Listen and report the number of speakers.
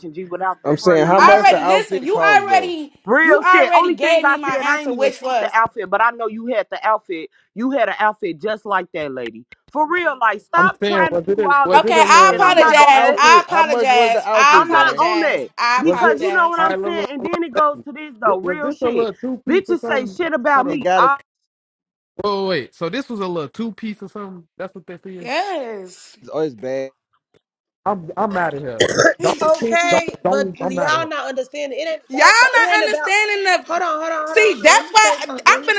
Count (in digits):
5